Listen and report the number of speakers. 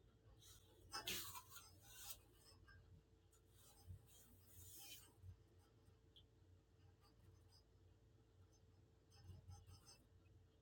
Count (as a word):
zero